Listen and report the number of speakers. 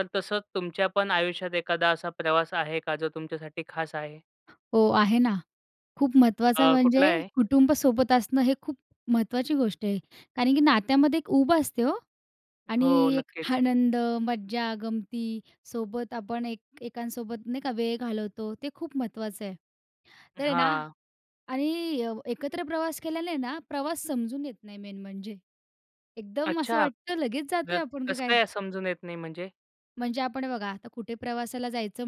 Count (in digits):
2